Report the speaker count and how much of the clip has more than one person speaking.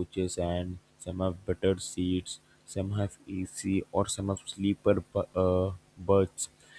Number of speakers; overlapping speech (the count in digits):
1, no overlap